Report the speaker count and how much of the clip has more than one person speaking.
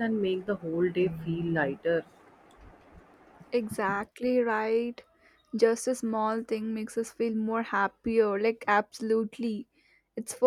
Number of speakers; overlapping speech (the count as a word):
two, no overlap